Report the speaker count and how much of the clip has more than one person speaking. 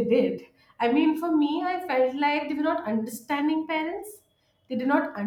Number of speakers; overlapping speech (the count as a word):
one, no overlap